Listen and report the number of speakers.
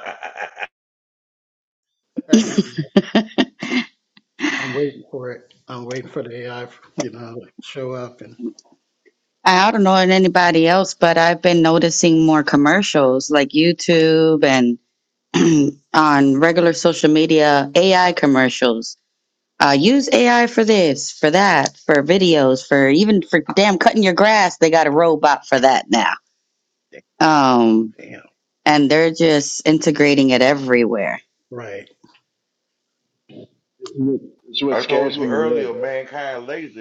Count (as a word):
four